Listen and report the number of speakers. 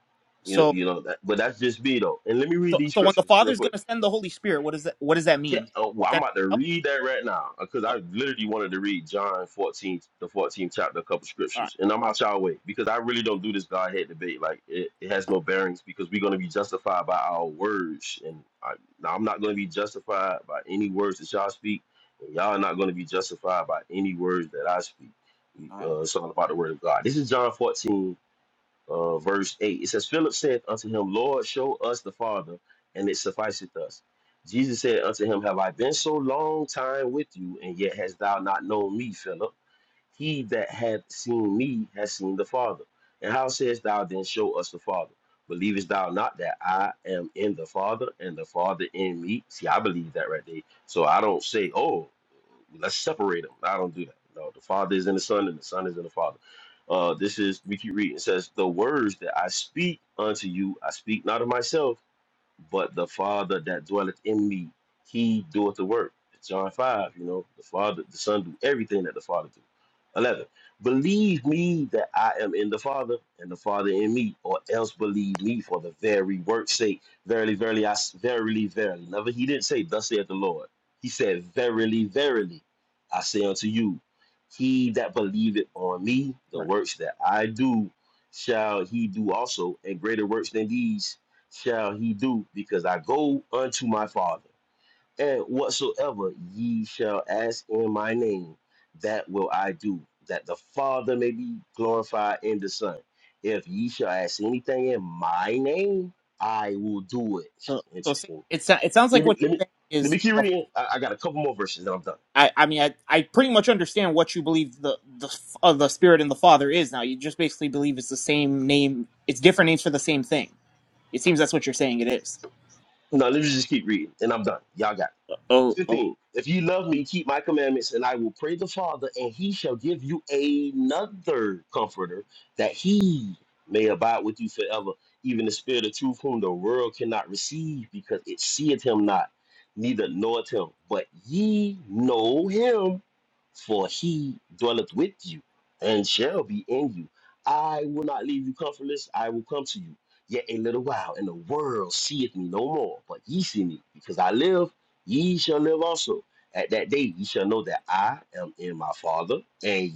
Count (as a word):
two